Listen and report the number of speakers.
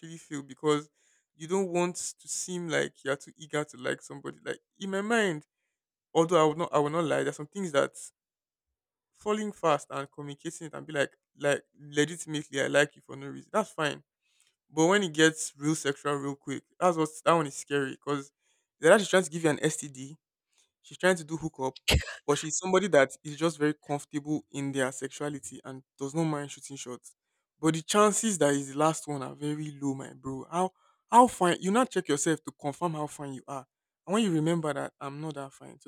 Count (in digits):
1